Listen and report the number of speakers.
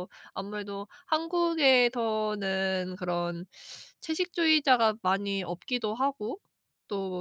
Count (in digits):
1